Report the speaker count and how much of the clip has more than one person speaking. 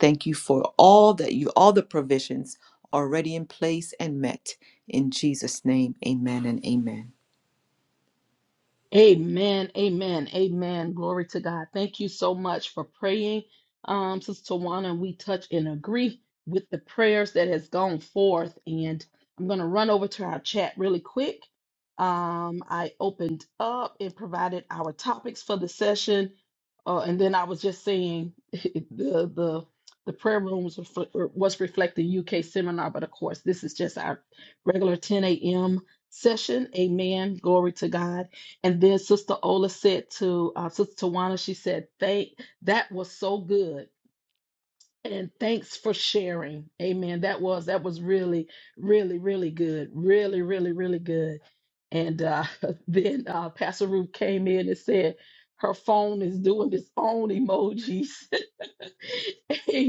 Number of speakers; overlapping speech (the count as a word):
two, no overlap